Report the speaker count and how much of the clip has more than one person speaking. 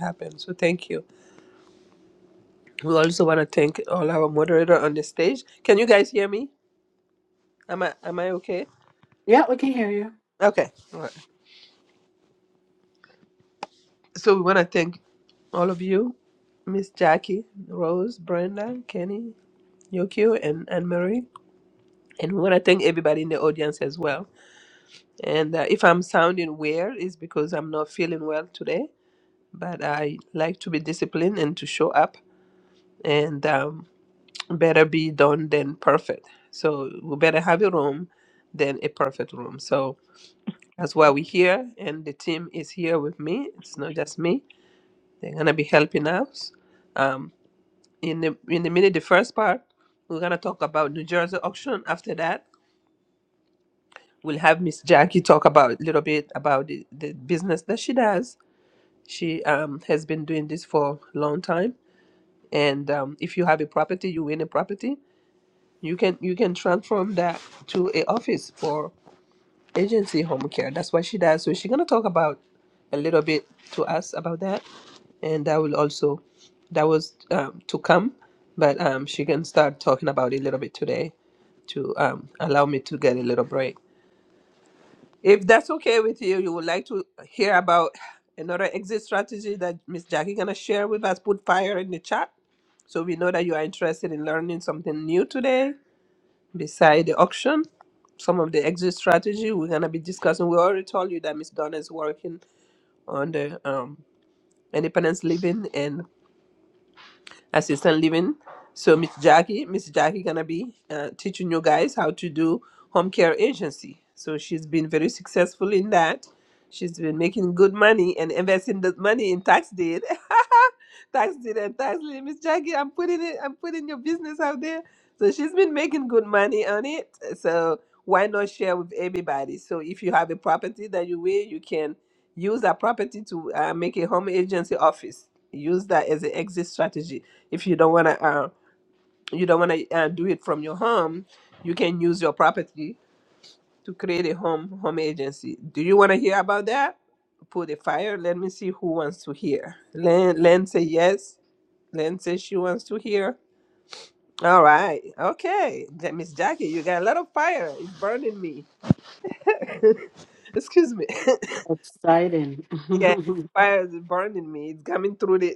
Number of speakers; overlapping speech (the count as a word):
two, no overlap